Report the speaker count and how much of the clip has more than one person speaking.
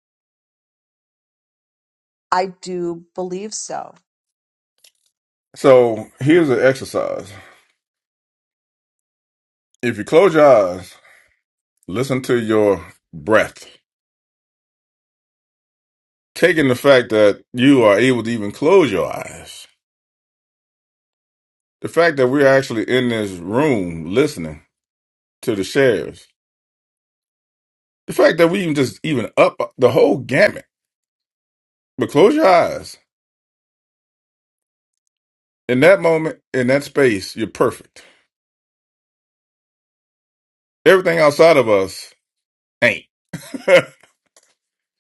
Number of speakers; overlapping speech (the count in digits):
2, no overlap